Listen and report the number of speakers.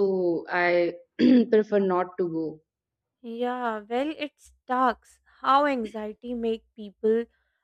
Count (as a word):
two